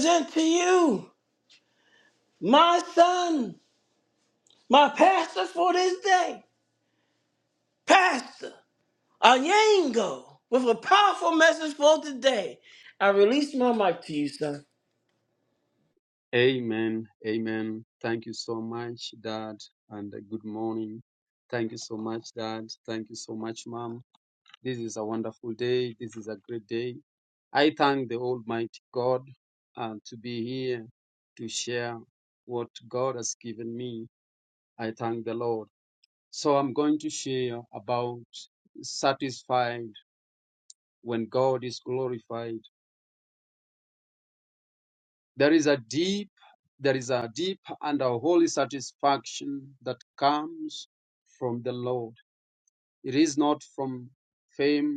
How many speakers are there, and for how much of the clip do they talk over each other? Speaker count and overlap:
two, no overlap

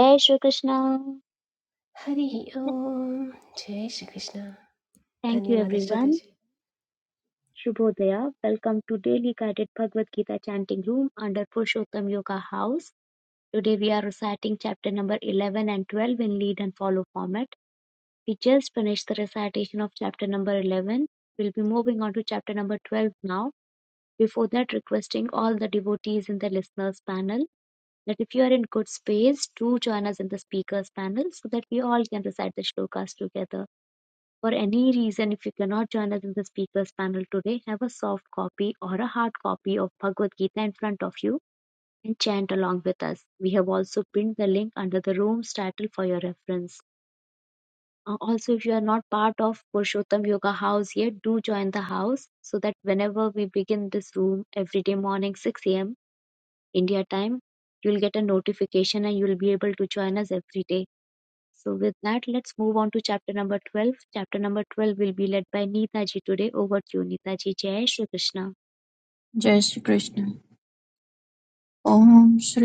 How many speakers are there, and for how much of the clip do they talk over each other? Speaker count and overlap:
three, about 1%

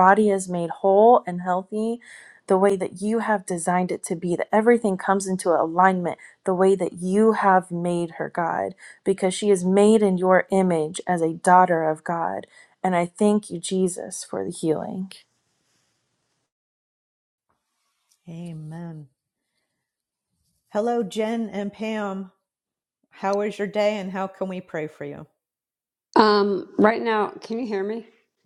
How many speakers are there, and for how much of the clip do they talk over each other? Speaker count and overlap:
three, no overlap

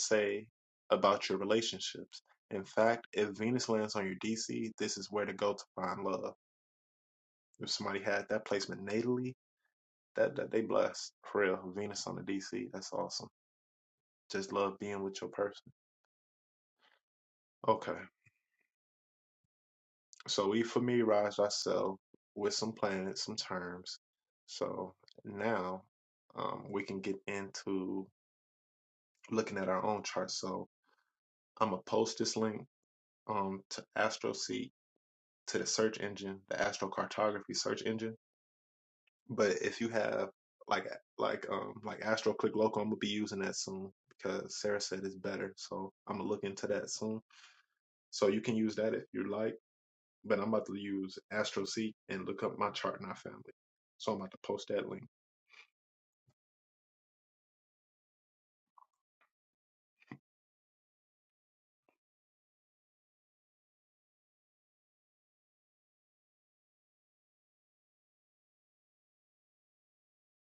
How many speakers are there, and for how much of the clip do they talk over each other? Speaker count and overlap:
one, no overlap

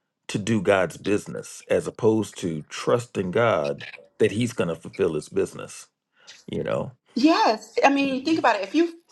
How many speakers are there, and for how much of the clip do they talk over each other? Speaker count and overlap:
two, about 4%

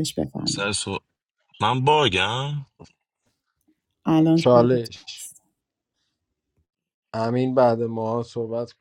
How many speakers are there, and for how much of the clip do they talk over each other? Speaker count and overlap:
three, about 7%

